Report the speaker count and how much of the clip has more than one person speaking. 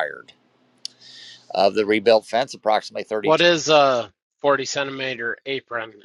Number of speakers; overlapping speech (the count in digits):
2, about 3%